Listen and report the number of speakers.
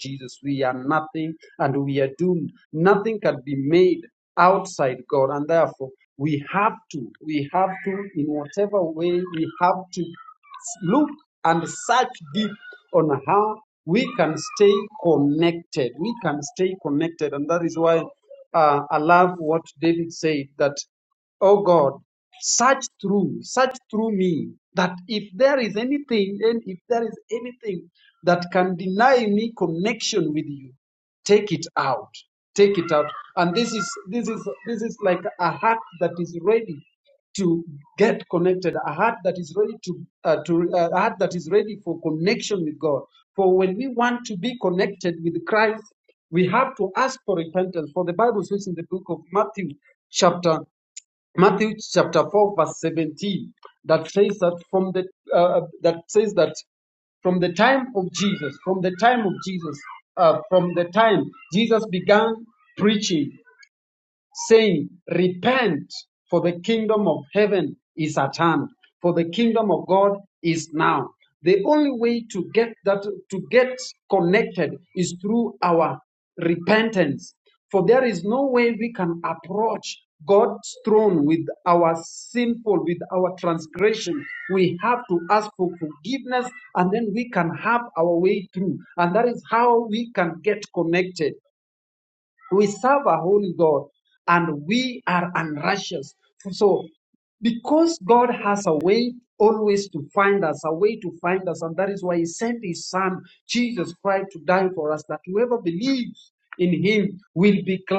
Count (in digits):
1